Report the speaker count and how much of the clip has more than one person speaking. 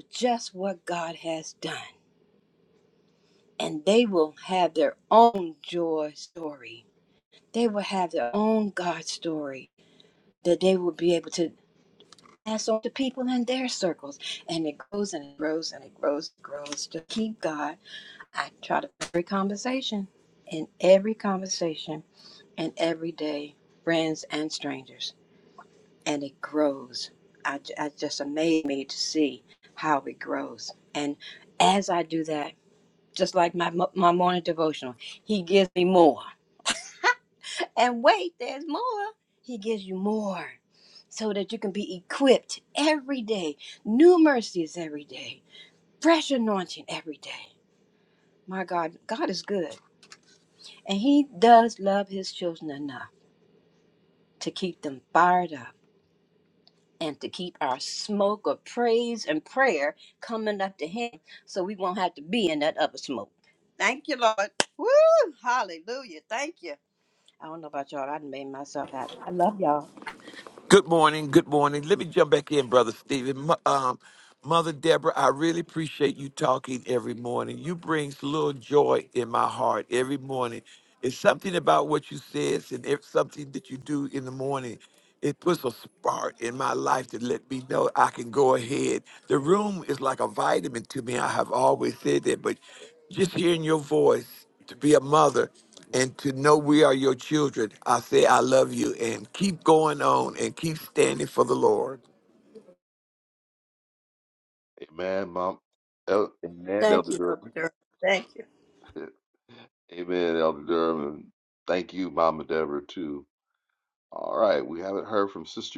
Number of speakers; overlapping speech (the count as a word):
three, about 1%